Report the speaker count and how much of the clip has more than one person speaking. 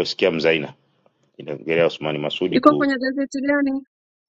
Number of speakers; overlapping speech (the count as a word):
two, about 8%